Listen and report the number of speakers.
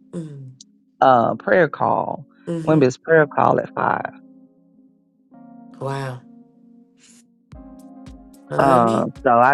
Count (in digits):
2